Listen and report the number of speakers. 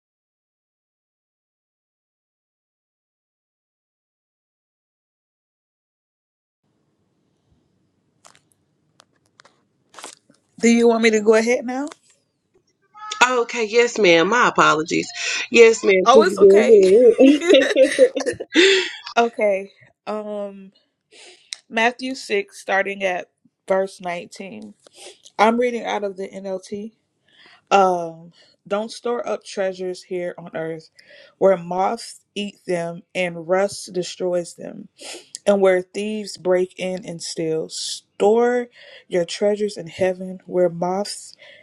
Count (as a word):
two